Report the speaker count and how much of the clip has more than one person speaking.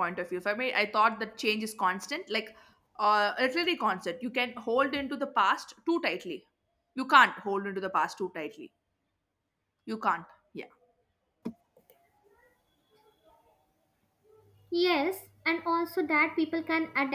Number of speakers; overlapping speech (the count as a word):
two, no overlap